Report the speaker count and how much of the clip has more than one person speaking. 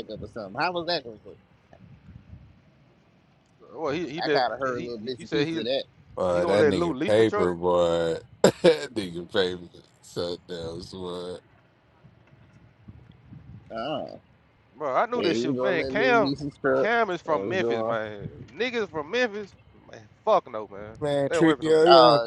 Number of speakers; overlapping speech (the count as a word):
three, about 26%